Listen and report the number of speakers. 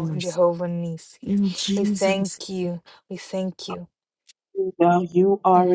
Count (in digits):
3